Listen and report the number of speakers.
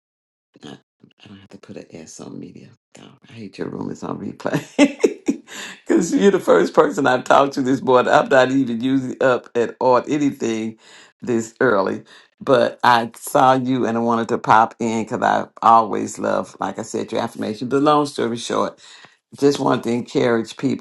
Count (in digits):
1